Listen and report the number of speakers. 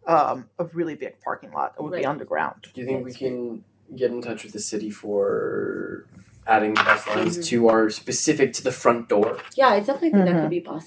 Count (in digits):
3